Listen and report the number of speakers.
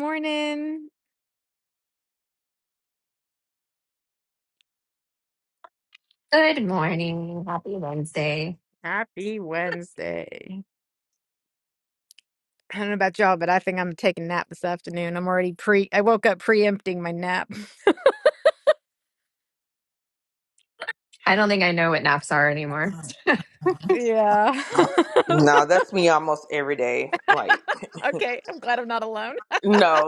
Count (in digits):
3